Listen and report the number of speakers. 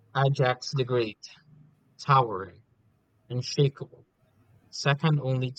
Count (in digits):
1